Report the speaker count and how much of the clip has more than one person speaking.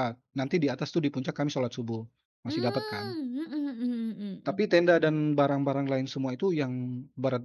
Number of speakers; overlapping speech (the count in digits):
2, about 10%